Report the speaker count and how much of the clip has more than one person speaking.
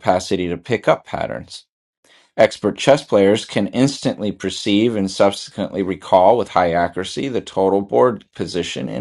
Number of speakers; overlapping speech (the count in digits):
1, no overlap